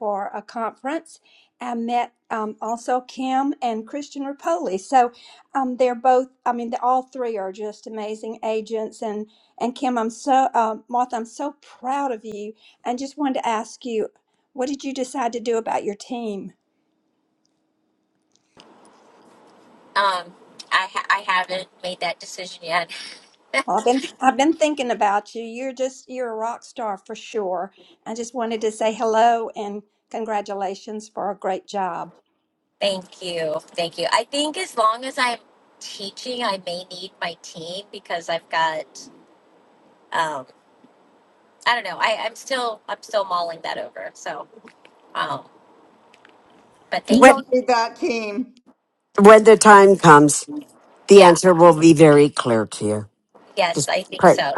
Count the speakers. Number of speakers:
4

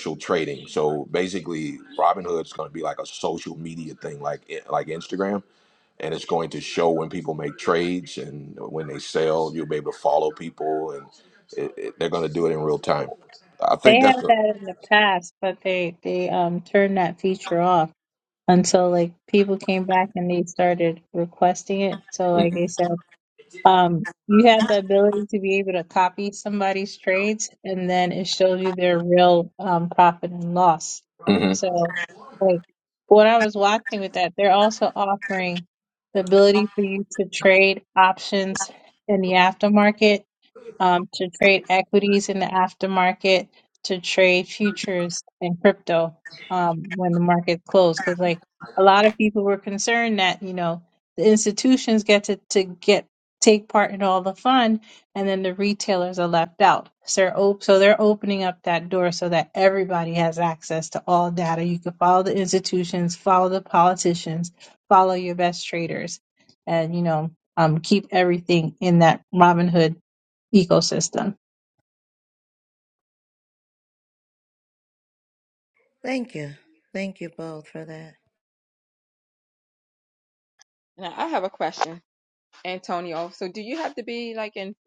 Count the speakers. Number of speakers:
4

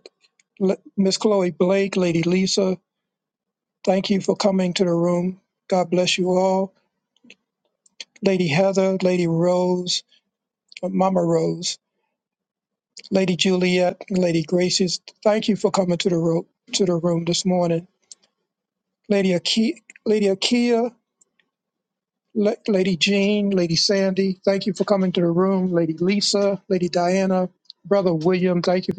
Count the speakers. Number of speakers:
1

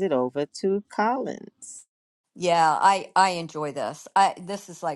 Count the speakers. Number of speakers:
2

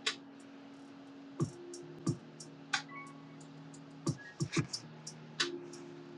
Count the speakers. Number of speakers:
0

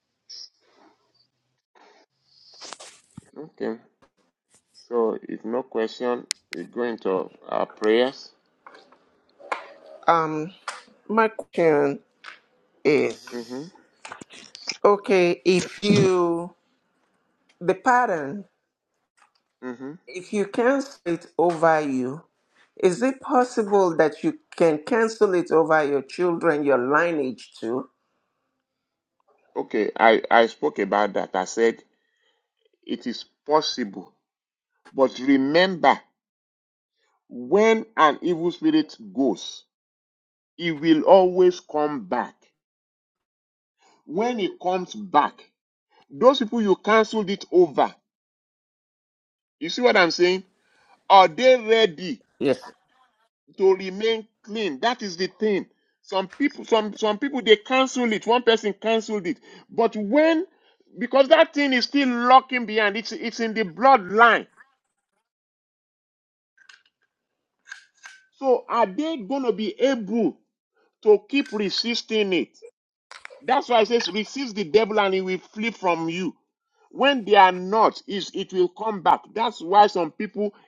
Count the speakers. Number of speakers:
2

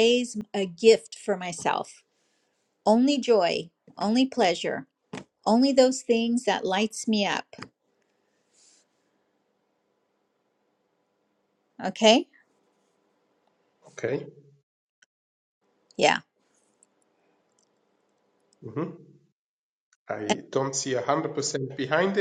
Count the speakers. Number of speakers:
2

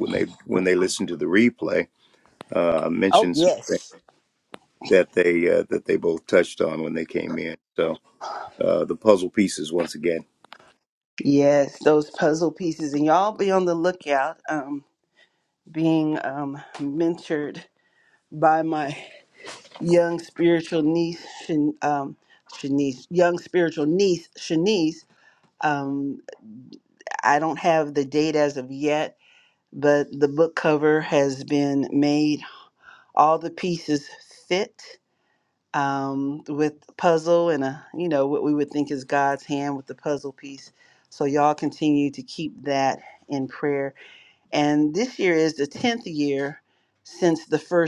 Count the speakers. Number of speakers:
2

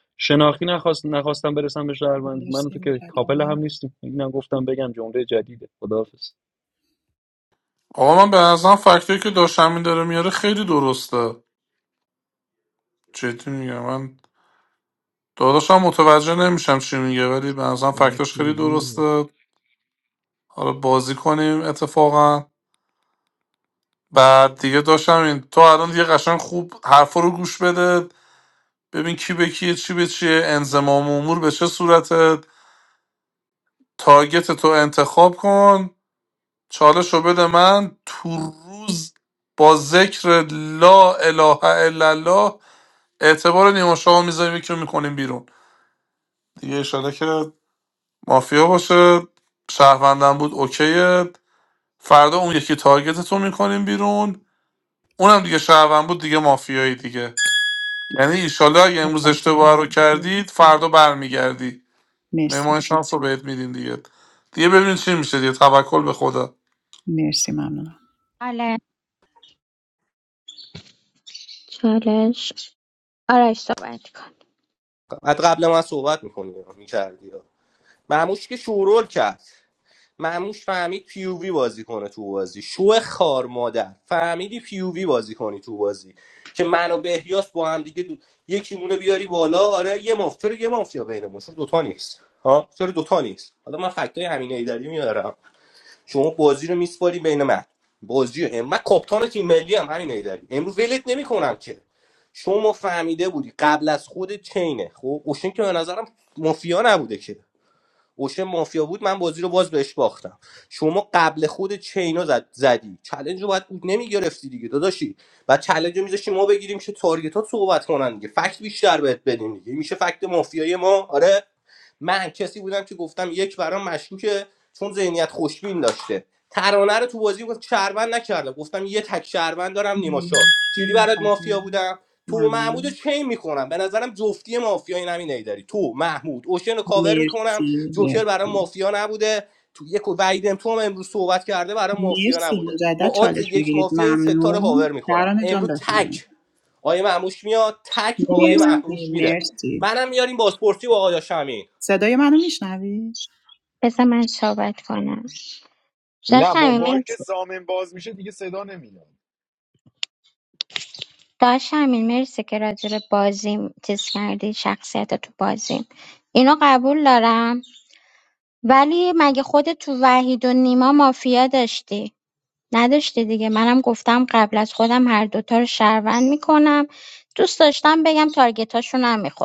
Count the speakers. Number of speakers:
6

